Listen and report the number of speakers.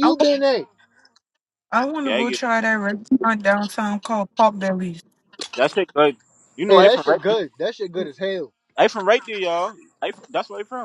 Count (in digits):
3